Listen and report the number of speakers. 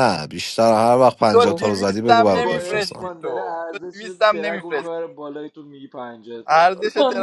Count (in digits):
3